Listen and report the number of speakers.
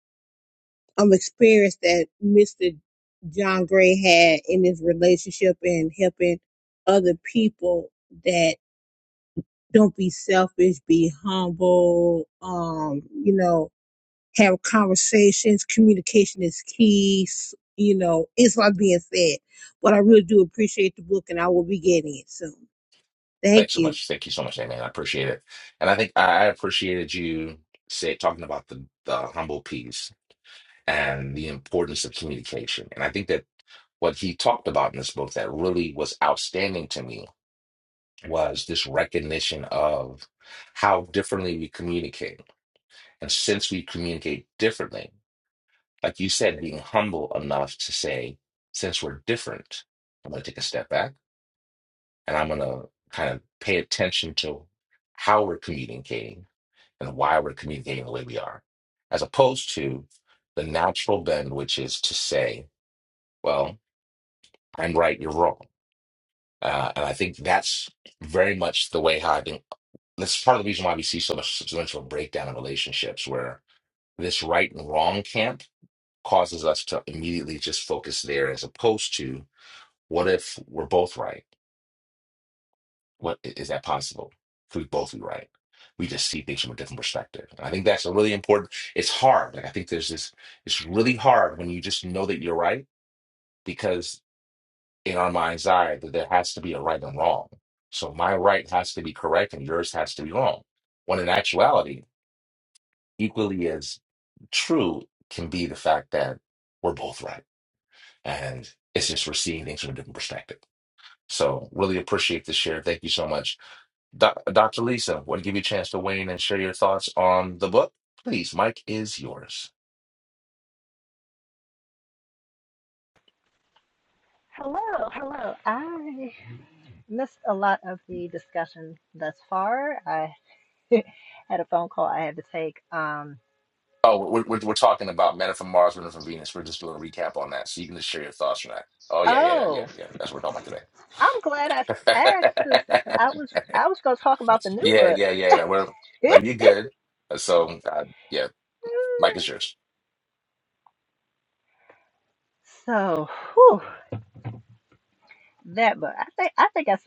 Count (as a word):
three